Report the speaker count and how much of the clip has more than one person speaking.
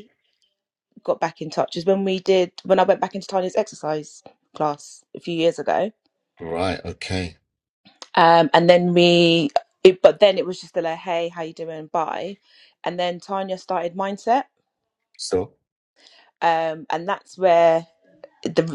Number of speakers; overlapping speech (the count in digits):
2, no overlap